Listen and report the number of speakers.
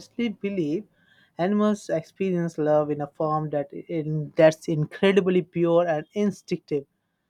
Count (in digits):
1